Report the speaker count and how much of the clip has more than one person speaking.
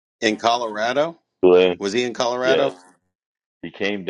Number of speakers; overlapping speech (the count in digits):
2, about 6%